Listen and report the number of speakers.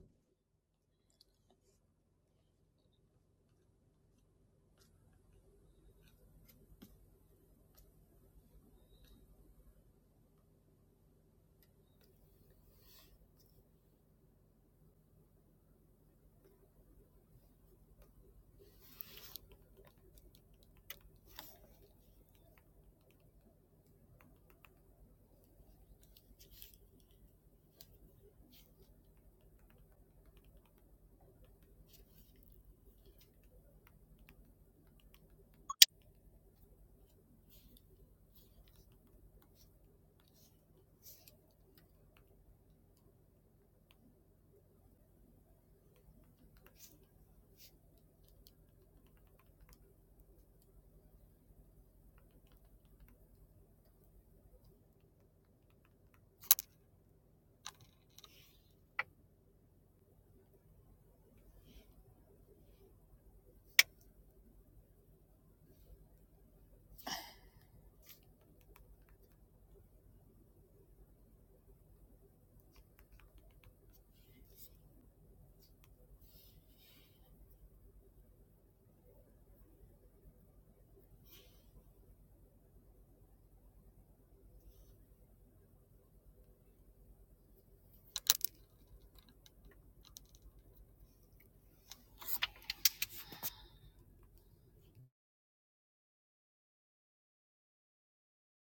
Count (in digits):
0